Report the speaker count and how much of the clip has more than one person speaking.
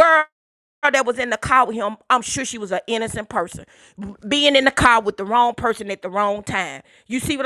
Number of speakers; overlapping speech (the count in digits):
1, no overlap